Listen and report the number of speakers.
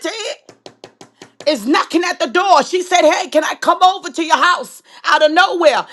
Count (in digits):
1